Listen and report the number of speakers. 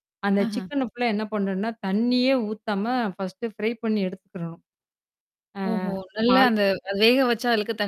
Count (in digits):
2